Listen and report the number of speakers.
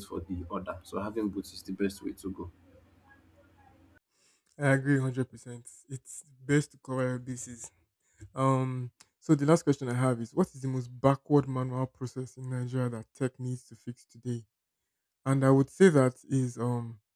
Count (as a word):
two